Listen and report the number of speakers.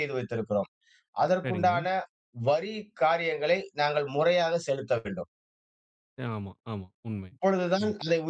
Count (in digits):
2